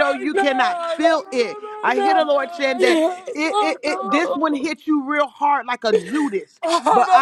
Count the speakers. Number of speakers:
two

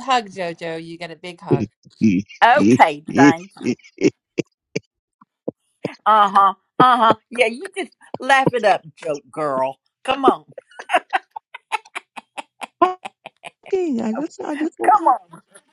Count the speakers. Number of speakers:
three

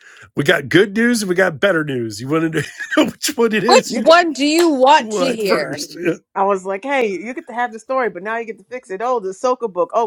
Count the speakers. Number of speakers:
three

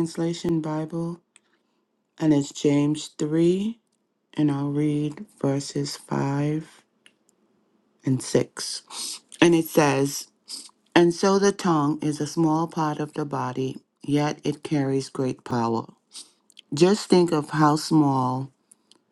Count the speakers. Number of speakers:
one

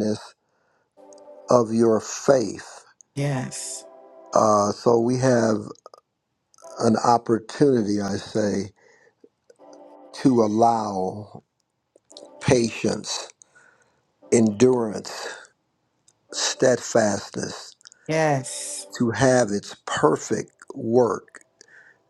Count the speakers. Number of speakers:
two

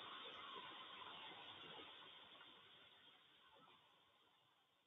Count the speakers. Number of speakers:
zero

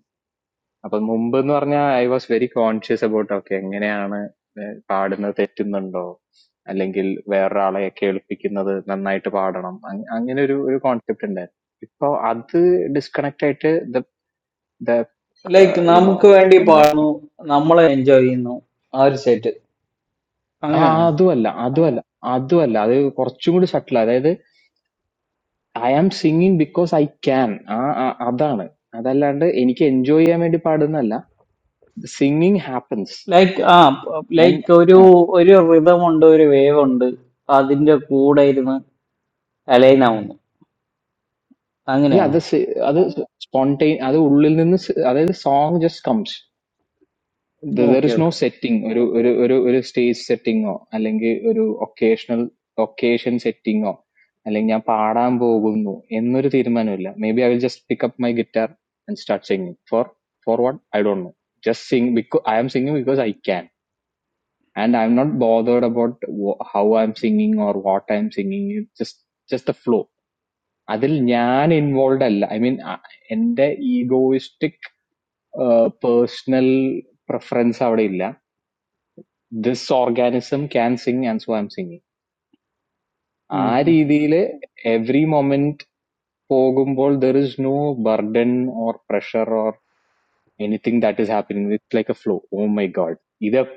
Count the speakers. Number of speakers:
two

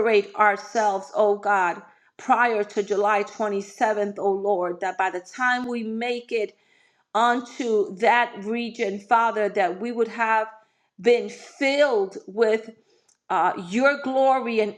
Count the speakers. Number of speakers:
one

